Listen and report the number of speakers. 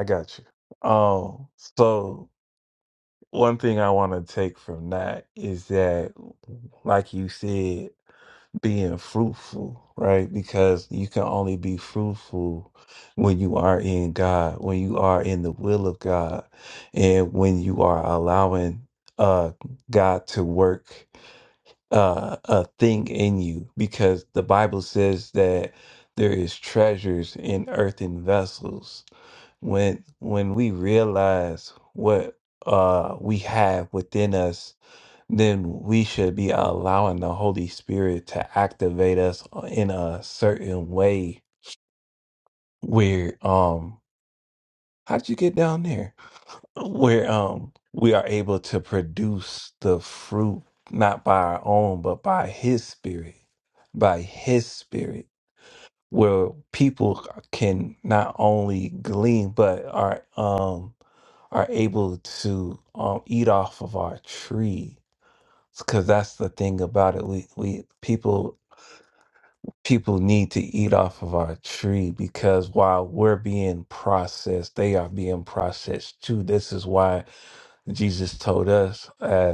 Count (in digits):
1